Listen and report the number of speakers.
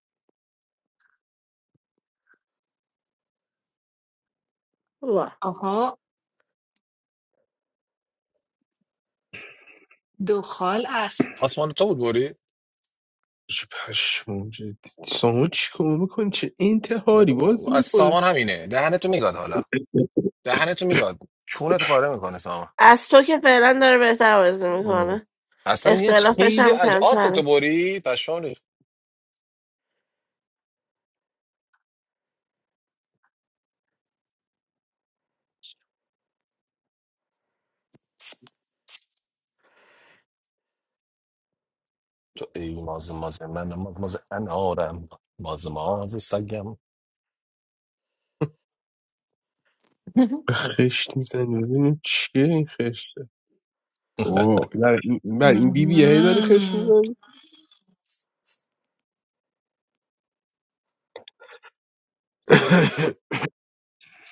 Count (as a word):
four